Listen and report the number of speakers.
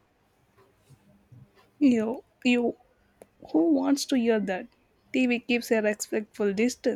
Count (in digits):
1